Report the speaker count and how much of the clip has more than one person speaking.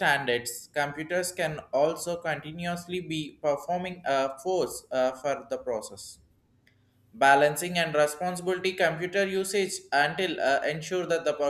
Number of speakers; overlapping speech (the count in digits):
1, no overlap